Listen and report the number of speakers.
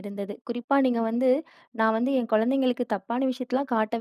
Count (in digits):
1